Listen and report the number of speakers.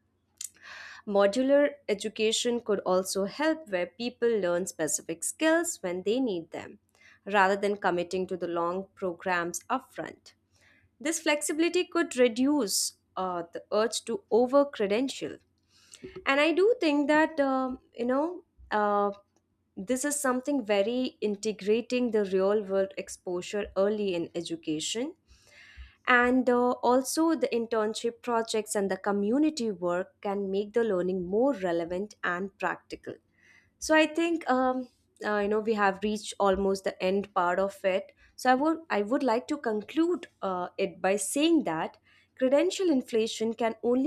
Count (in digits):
1